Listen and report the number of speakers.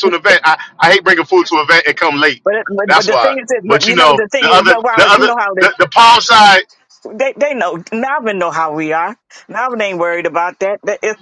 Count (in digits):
2